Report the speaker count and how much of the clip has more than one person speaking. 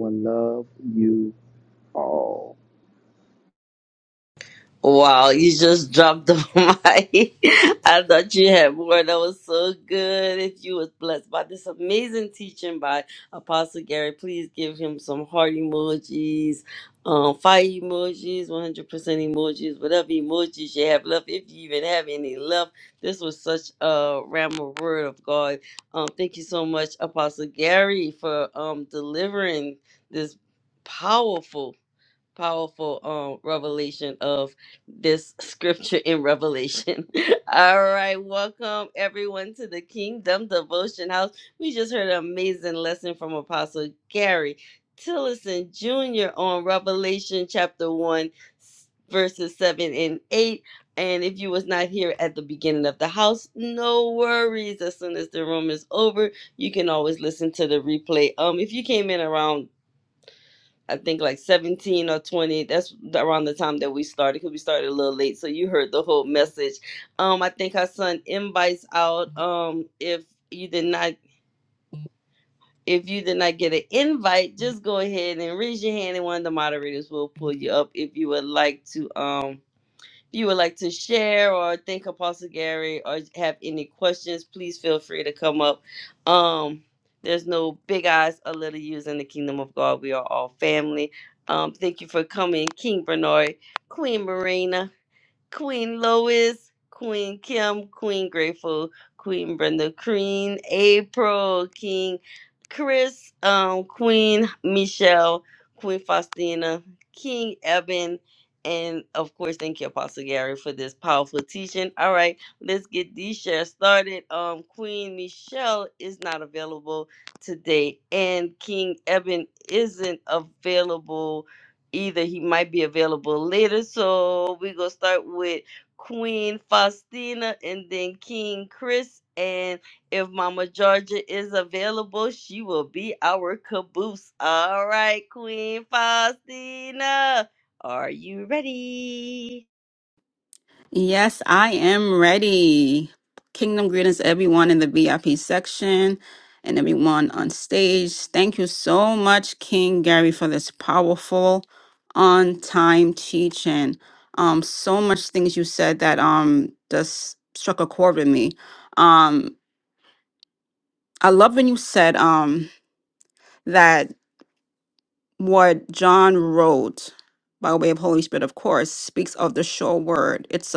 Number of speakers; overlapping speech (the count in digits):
3, no overlap